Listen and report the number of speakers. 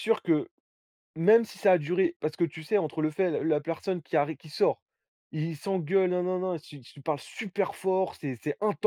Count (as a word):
one